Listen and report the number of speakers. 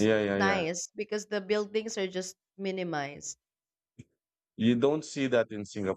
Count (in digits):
2